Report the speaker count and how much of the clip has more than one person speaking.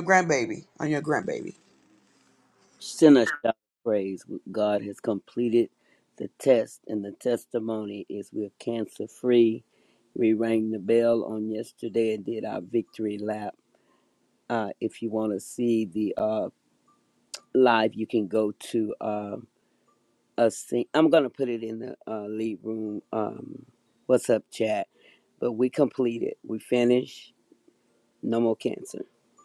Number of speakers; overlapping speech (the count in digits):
2, no overlap